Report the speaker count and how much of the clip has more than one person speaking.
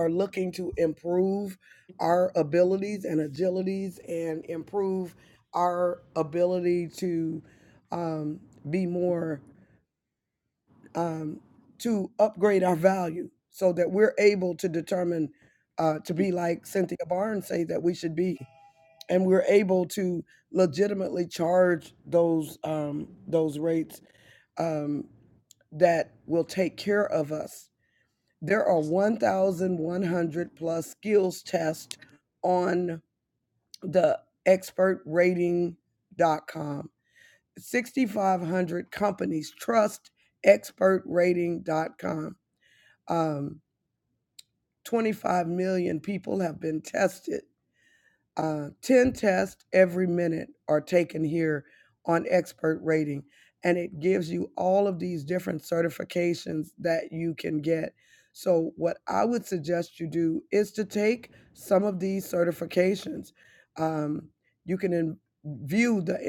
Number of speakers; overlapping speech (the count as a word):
one, no overlap